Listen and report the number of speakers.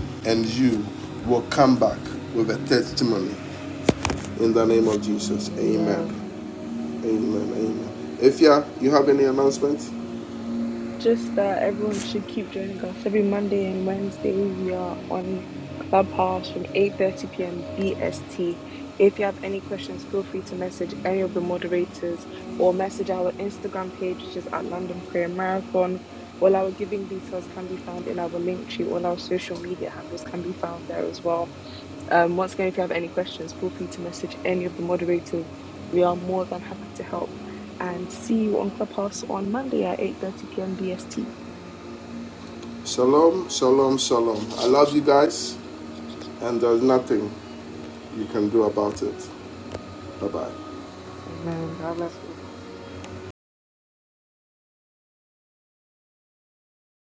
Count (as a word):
three